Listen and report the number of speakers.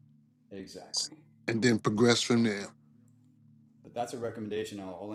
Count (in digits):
2